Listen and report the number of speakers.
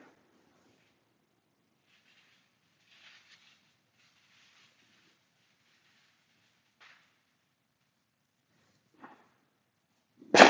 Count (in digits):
0